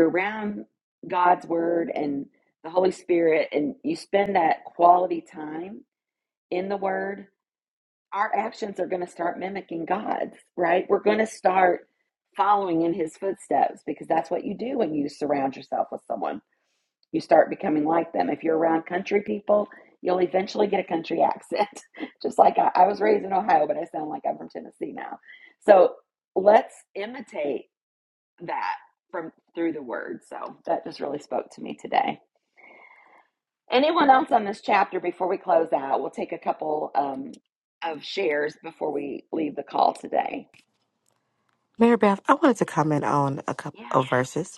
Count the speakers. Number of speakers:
two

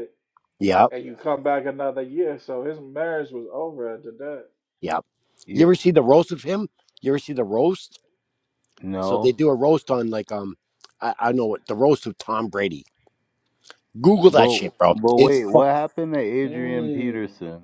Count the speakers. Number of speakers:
three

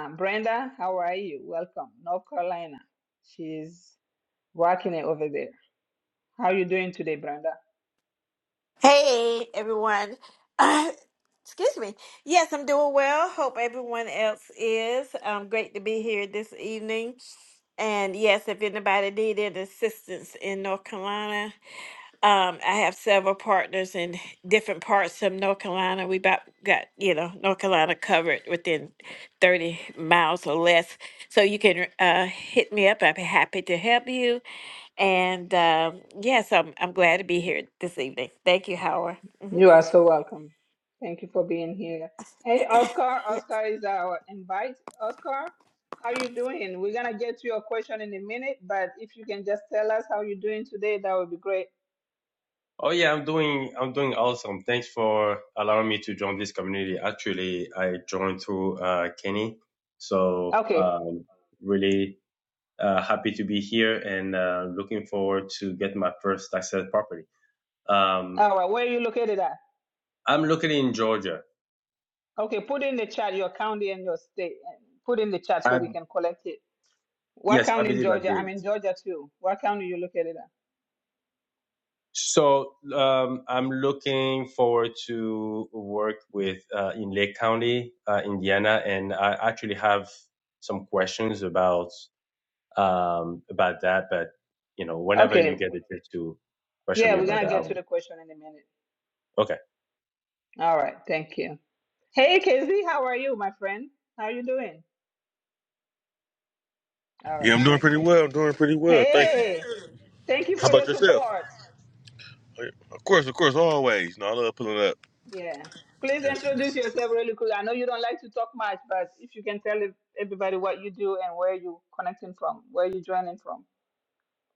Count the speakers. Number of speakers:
four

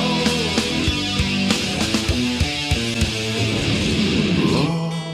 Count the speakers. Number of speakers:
zero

